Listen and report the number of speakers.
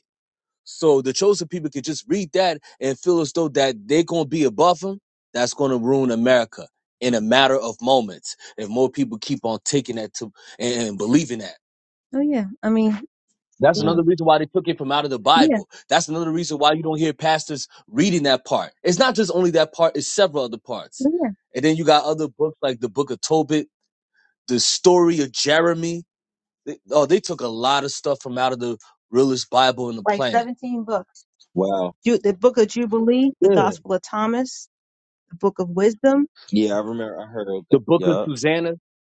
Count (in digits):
3